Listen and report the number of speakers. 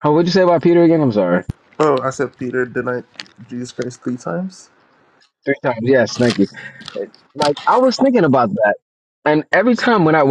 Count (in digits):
2